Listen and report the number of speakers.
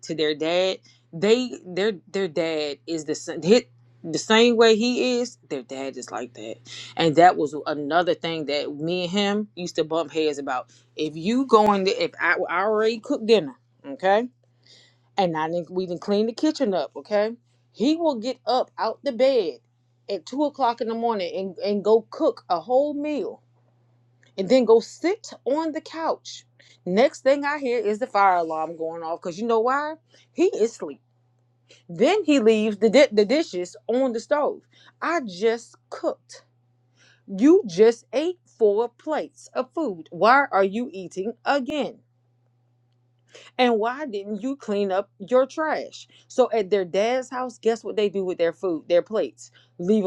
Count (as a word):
one